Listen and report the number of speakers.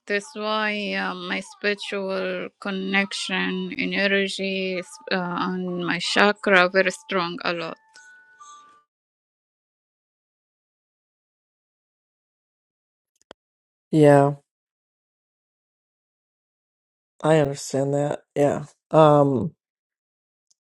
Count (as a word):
two